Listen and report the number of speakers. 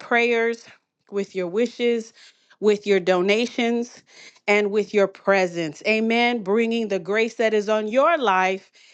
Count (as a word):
one